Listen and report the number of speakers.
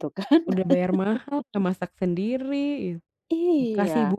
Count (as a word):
two